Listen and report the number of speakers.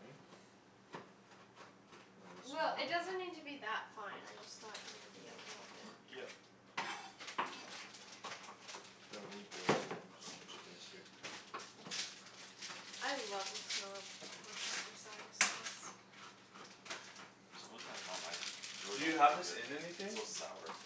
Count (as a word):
three